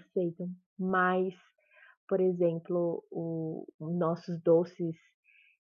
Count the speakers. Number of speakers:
1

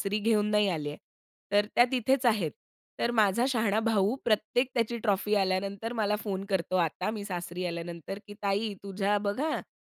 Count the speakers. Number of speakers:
1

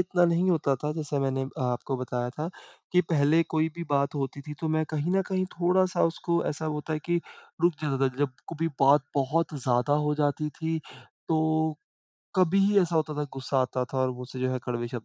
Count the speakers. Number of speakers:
1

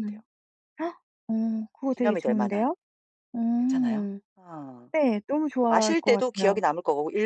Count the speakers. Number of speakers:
2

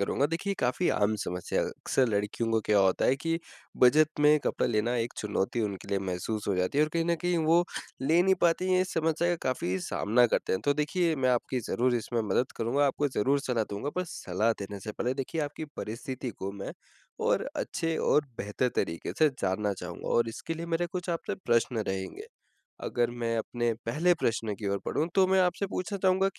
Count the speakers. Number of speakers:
1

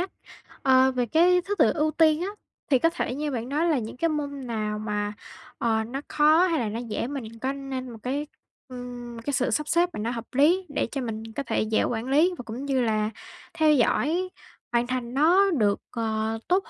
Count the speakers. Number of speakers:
1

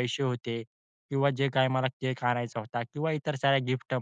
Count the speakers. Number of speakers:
1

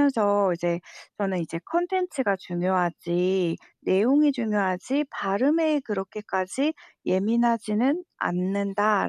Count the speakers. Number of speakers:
1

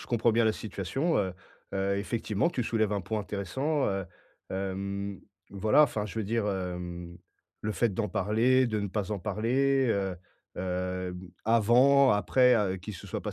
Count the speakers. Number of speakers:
1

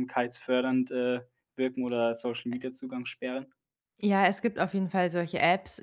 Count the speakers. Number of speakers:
2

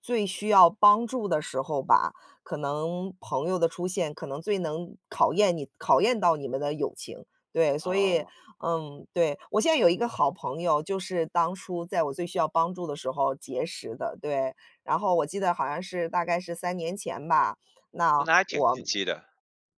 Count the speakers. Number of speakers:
2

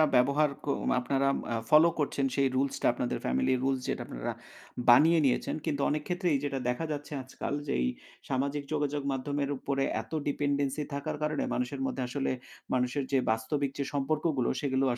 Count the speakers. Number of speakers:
1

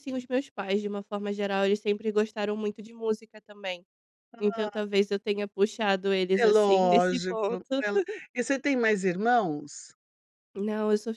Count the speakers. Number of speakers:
2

